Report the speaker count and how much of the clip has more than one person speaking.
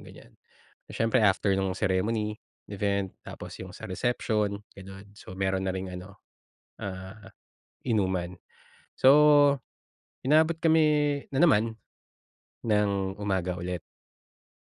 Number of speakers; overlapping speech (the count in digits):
1, no overlap